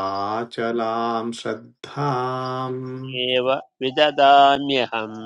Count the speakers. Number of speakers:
two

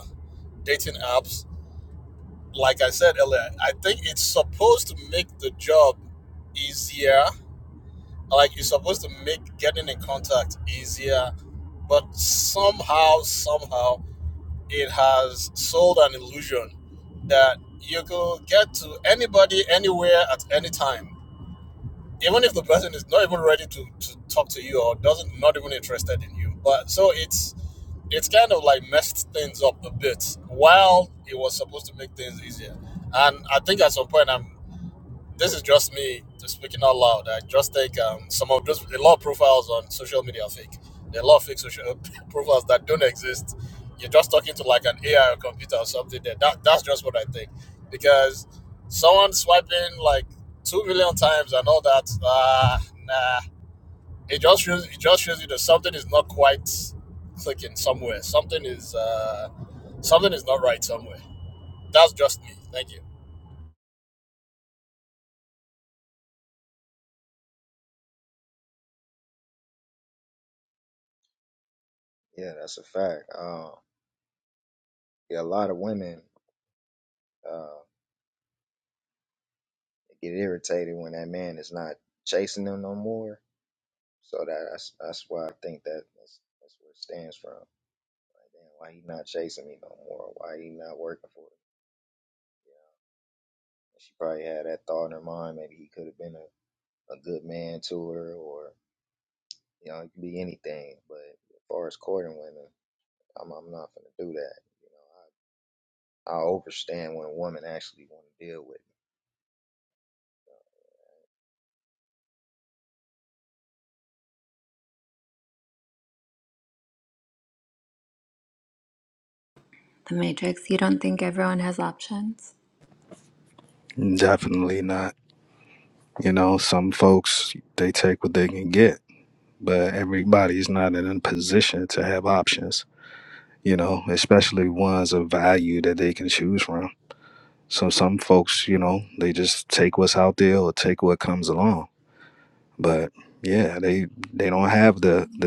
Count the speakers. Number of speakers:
four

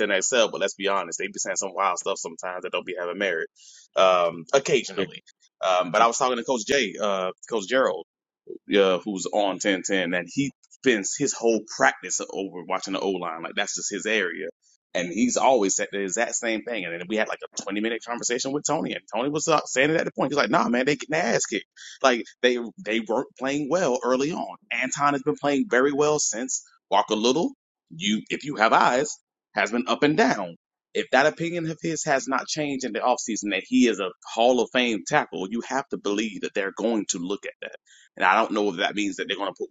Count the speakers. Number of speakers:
one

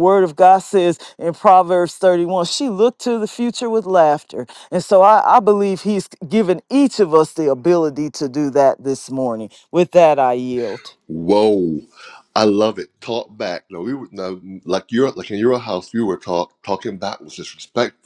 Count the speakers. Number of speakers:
two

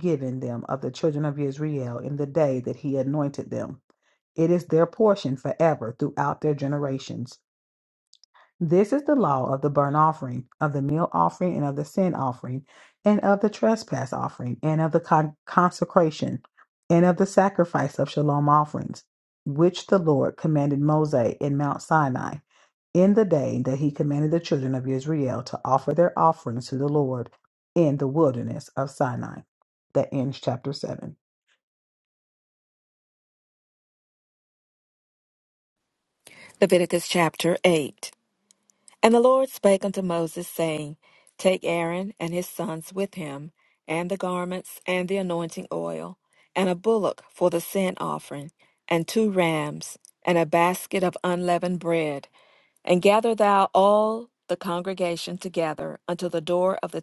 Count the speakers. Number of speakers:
two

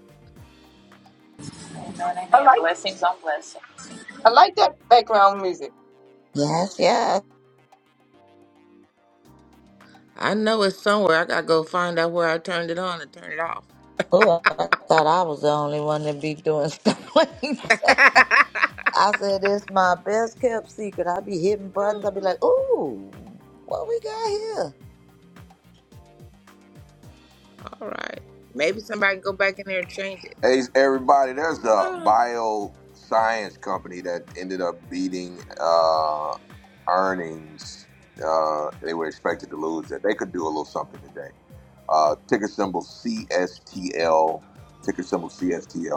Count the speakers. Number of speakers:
five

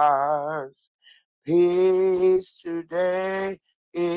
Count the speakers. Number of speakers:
one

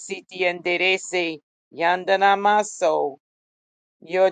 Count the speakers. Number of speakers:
one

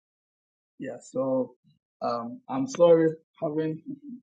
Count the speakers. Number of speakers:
one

